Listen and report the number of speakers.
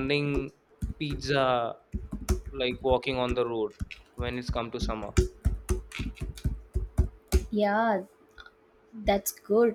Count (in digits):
2